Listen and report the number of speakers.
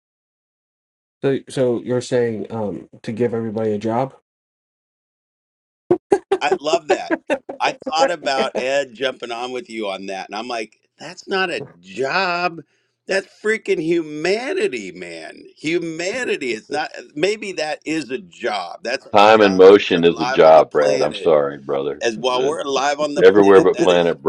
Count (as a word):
three